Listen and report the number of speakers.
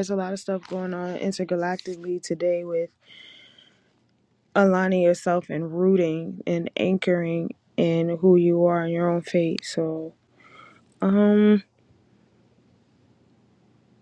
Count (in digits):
1